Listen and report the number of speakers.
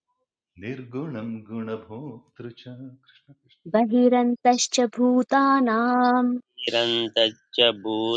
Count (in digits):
3